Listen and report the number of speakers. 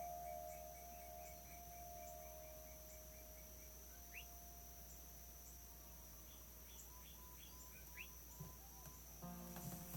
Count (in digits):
0